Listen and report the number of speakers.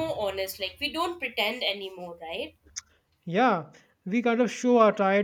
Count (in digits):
2